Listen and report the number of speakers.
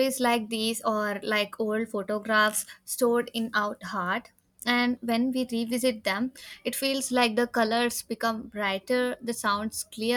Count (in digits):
1